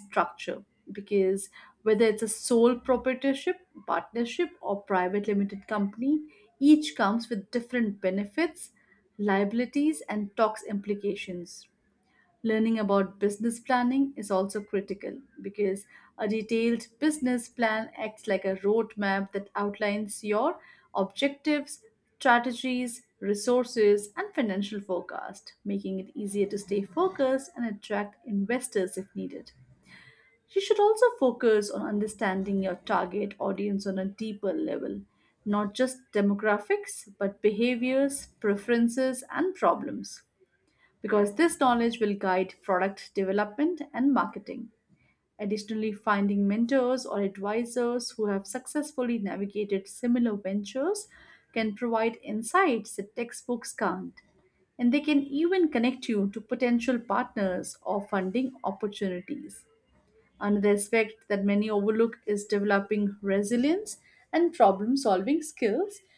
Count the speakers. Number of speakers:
1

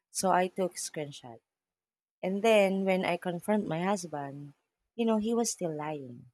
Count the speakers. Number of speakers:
1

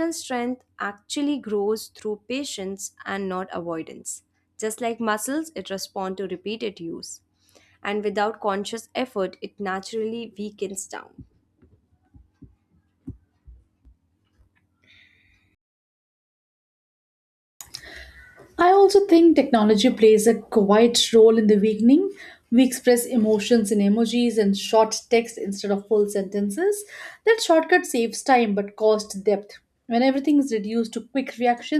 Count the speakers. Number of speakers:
2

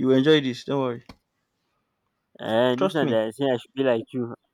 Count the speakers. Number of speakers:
2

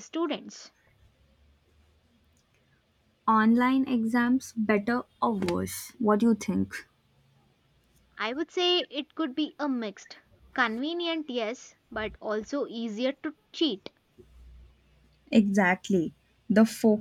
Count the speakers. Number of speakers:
2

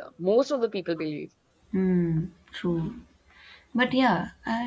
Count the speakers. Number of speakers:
2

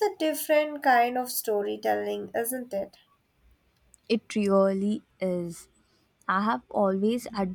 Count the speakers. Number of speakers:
2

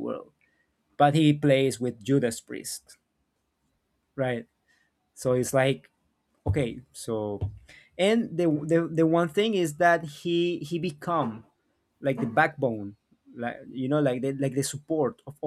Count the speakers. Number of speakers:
1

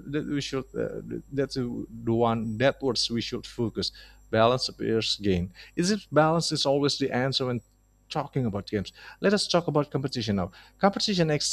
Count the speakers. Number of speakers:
1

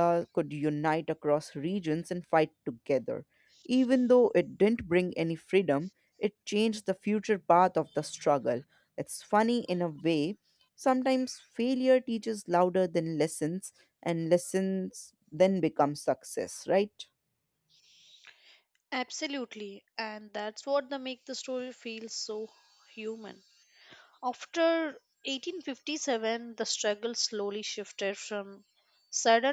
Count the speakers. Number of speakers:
2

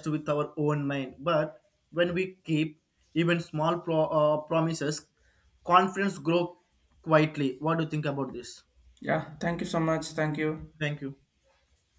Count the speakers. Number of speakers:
2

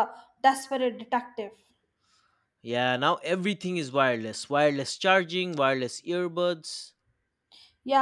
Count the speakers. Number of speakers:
2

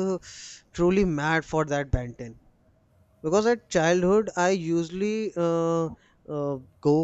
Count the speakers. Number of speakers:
1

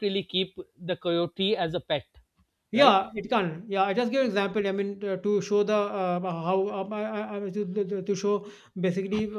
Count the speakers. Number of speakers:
2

